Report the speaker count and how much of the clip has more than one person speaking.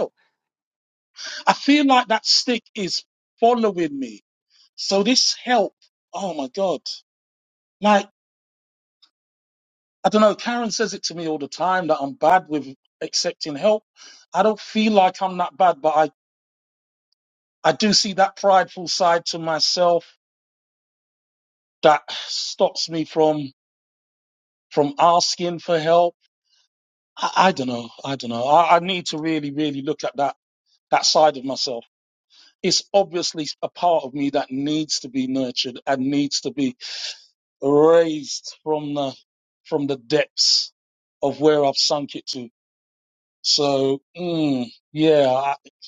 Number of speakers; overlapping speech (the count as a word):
one, no overlap